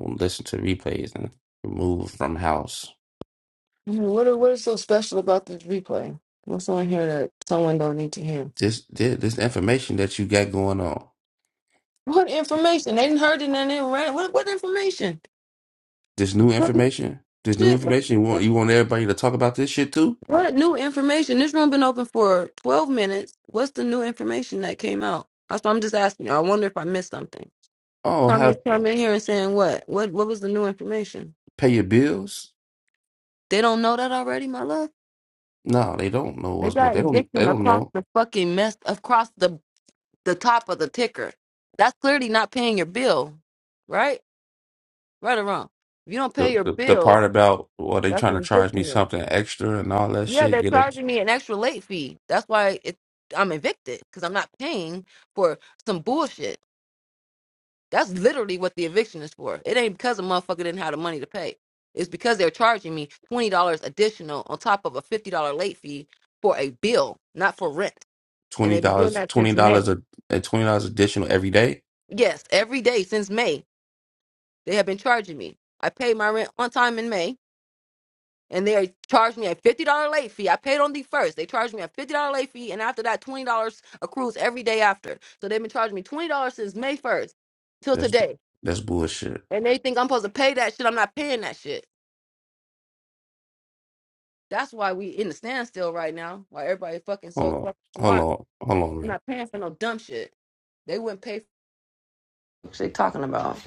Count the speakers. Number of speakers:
two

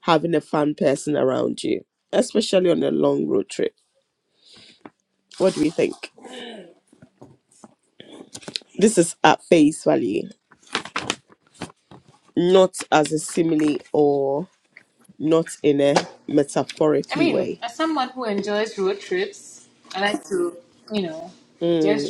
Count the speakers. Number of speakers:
two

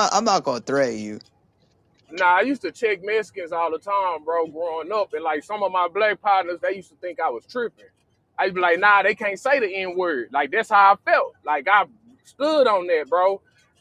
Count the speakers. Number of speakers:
two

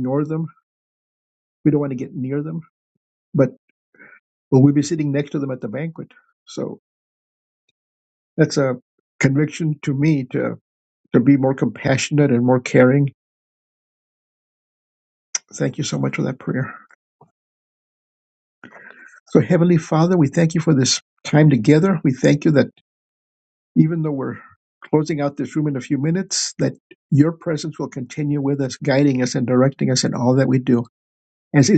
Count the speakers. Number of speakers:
one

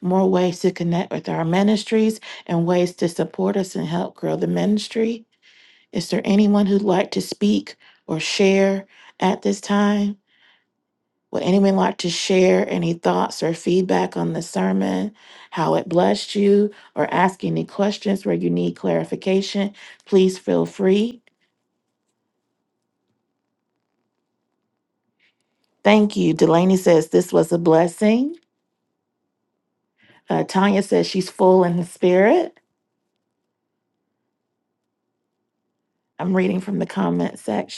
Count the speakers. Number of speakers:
one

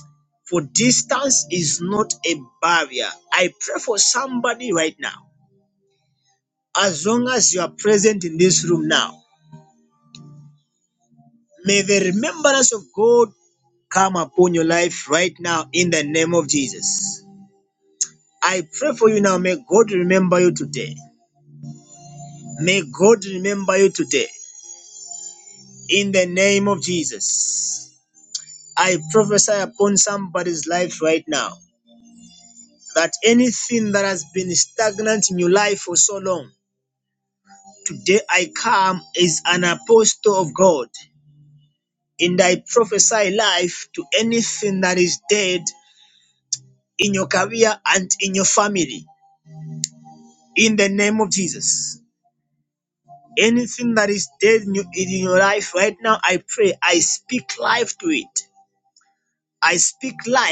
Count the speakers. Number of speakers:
one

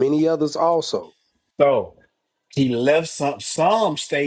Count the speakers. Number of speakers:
two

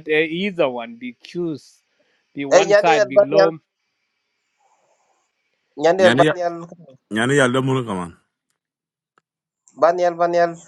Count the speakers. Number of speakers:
three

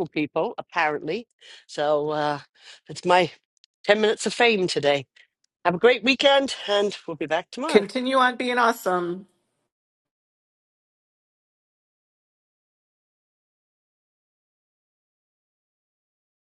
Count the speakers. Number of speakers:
two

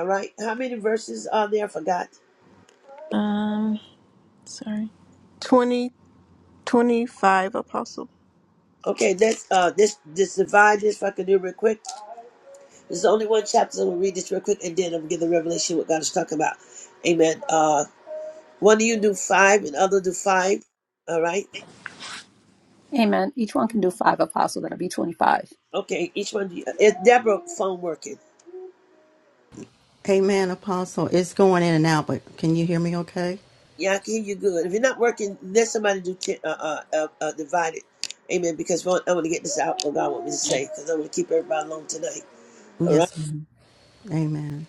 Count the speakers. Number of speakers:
four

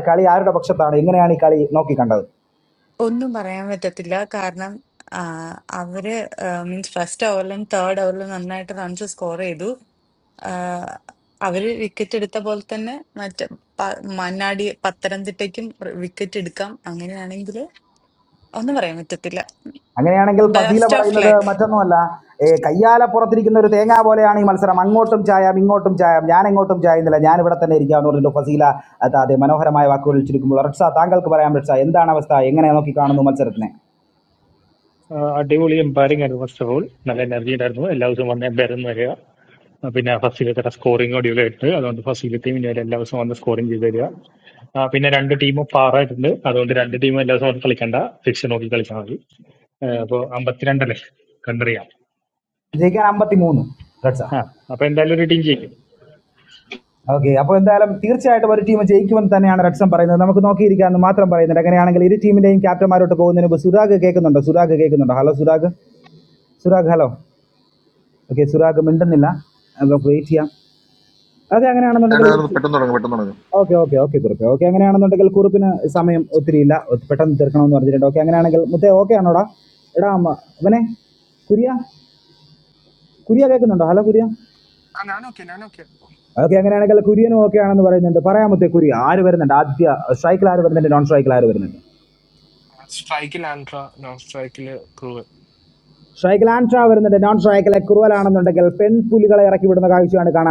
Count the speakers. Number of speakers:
five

